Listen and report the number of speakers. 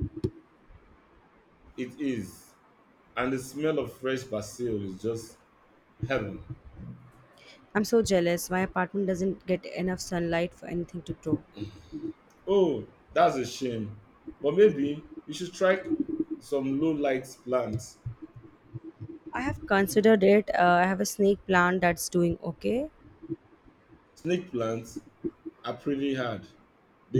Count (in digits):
2